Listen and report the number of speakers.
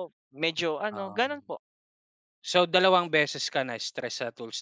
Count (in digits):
2